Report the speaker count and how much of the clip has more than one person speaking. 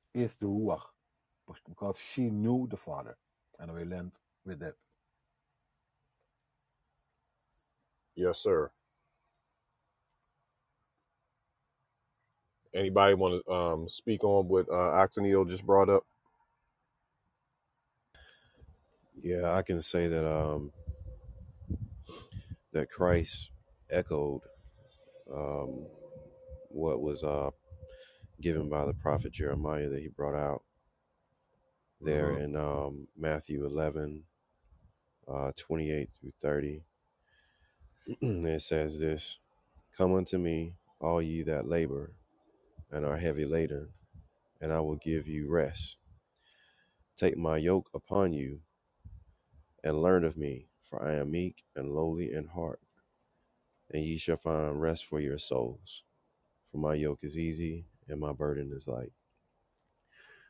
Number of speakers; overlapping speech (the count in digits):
3, about 1%